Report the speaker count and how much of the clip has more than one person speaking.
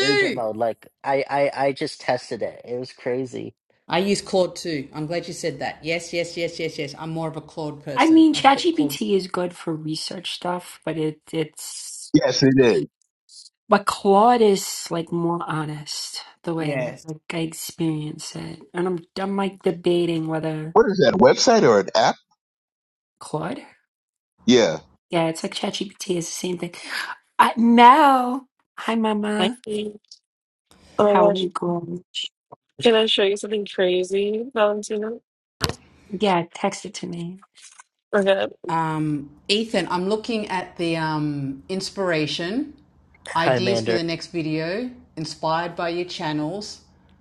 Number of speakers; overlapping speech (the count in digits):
5, about 7%